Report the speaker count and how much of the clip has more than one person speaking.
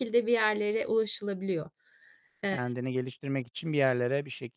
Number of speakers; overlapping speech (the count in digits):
2, about 2%